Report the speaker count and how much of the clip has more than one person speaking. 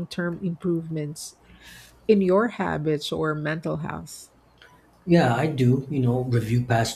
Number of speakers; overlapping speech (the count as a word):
two, no overlap